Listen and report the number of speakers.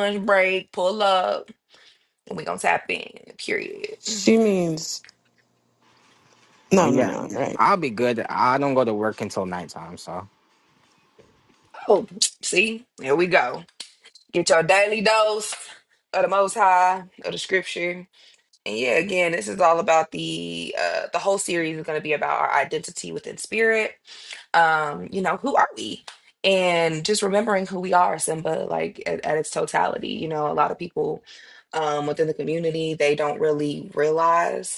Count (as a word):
three